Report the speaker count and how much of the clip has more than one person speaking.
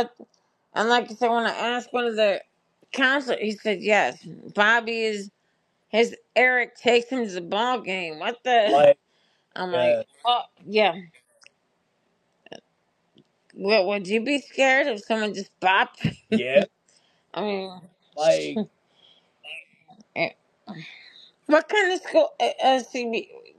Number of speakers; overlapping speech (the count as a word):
two, about 2%